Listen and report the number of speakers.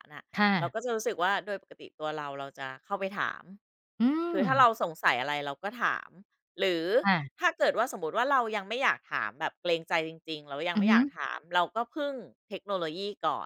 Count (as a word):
two